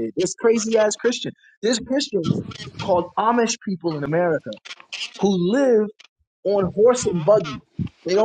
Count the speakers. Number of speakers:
1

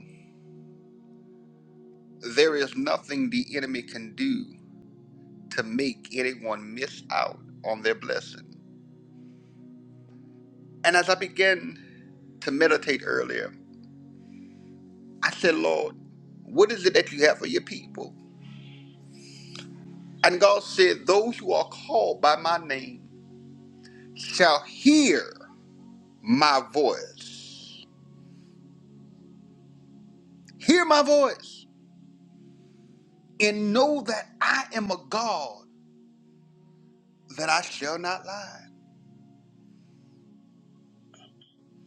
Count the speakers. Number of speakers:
1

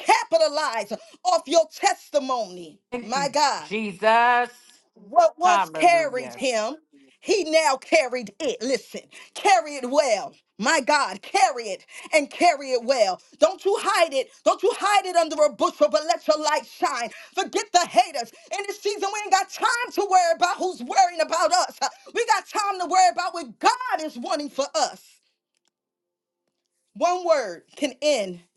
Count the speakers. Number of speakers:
2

